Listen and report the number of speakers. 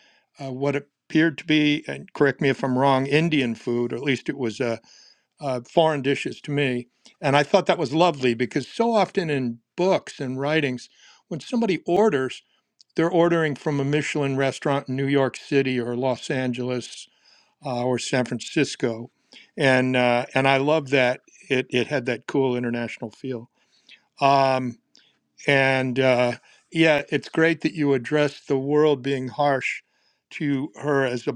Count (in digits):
1